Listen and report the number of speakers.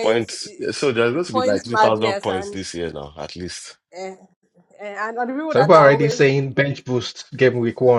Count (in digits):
3